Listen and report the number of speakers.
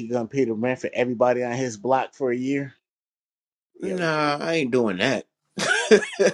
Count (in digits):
2